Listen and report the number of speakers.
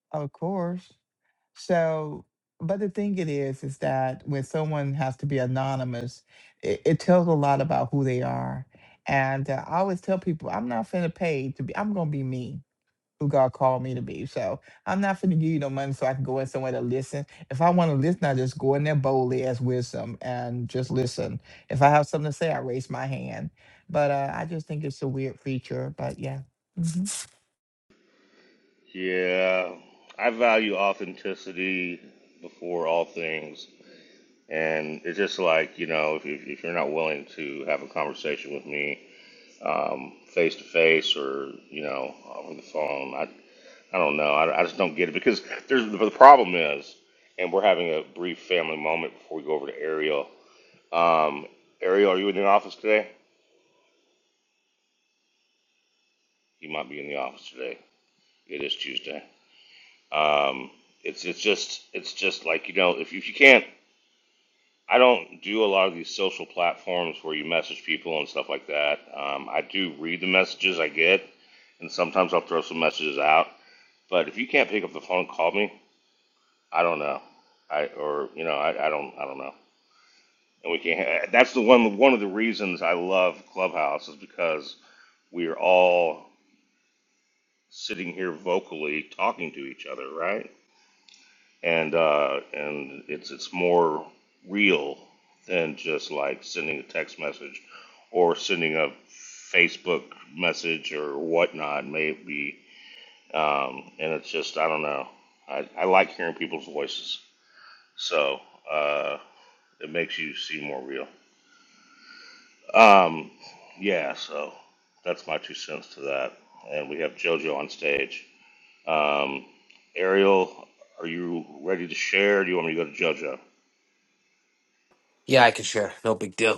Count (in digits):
3